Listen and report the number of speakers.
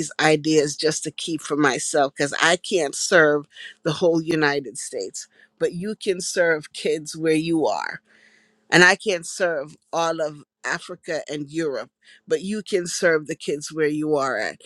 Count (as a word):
one